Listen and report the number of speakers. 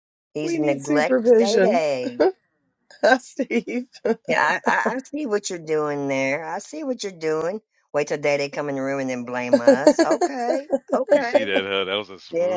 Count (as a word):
three